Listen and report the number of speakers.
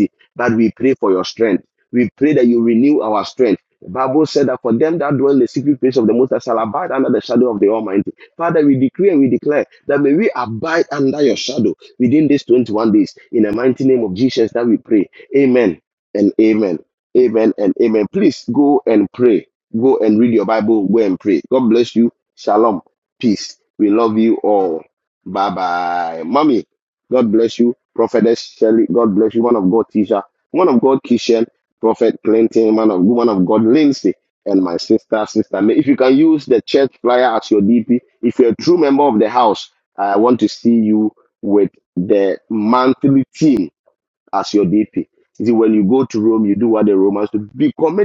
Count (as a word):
one